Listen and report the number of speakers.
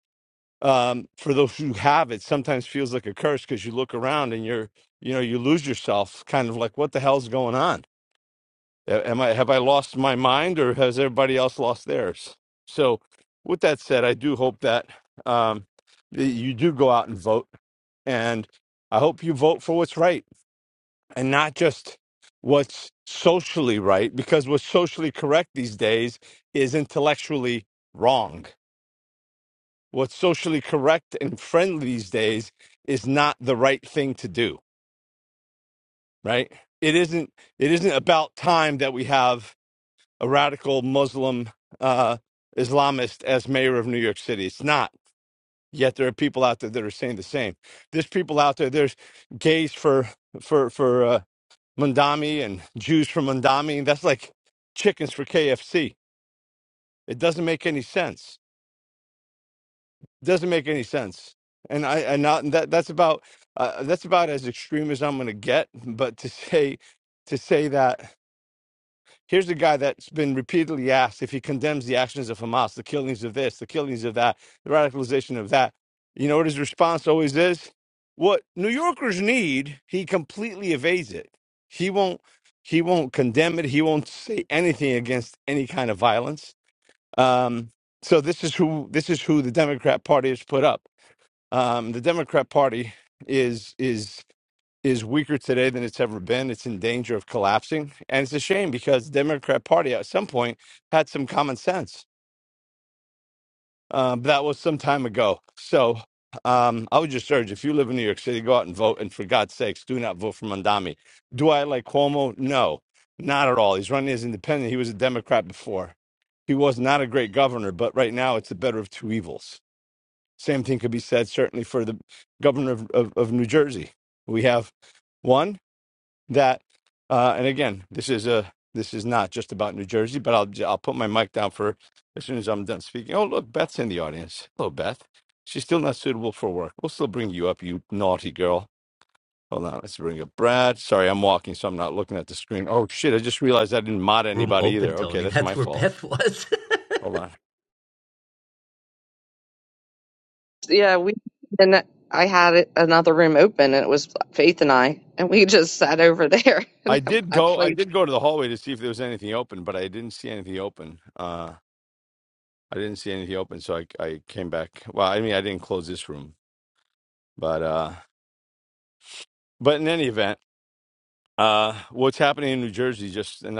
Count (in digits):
3